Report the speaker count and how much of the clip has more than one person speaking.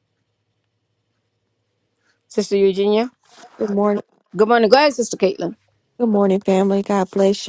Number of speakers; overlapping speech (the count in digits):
2, no overlap